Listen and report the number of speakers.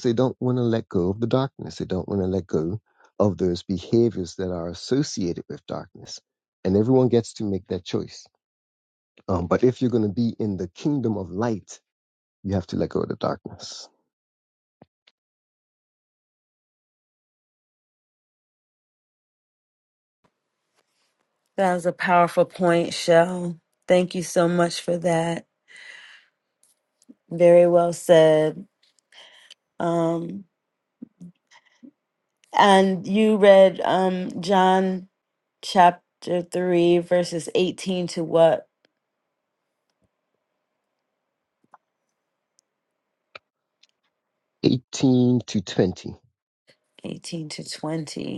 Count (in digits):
2